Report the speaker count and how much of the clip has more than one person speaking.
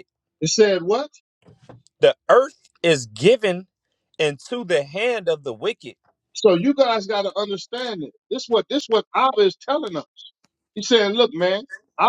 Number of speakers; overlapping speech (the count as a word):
two, no overlap